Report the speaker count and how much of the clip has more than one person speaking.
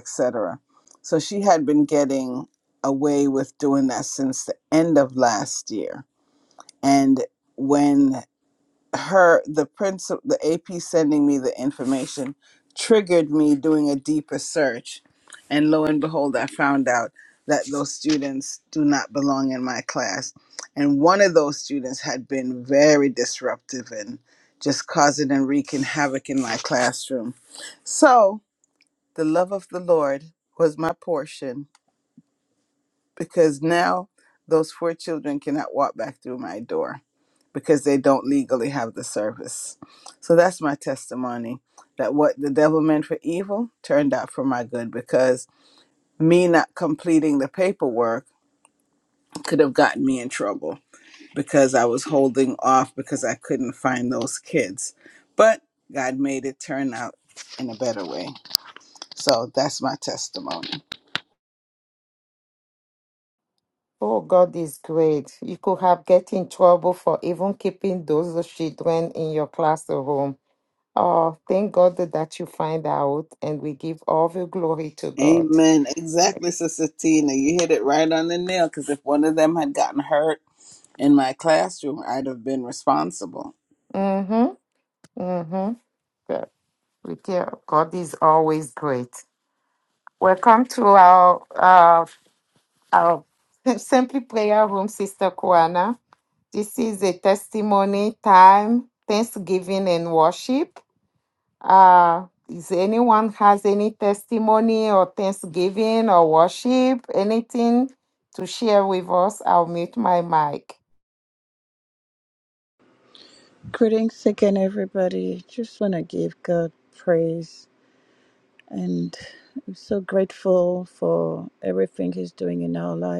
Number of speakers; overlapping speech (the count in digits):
3, under 1%